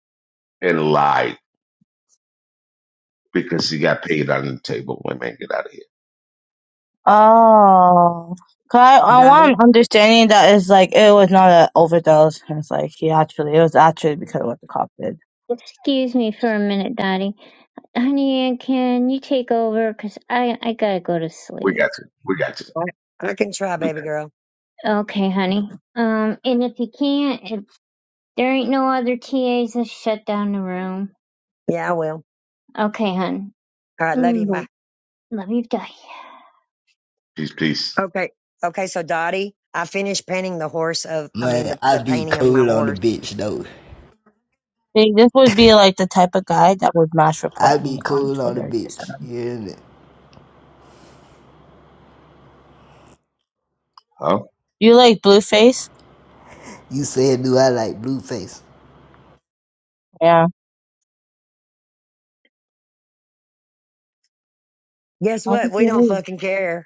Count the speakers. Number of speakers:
5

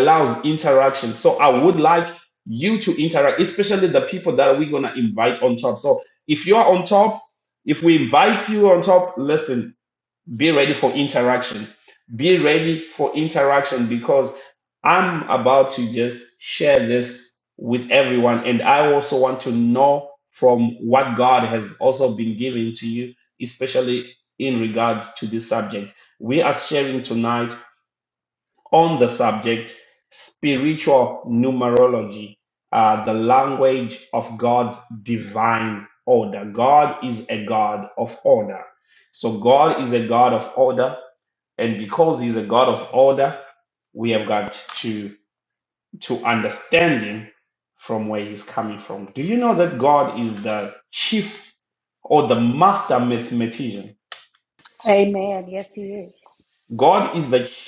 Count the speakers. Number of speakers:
2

